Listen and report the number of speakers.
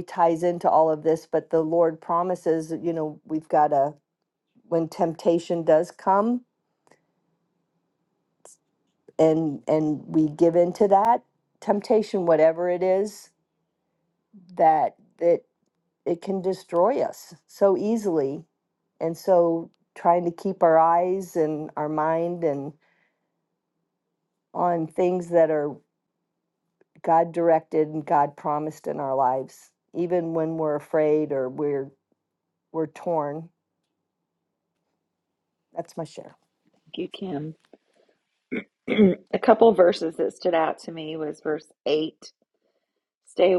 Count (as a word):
two